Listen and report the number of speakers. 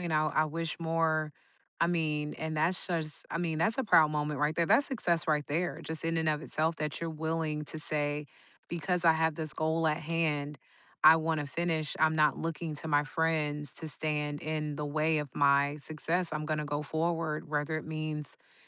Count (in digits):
1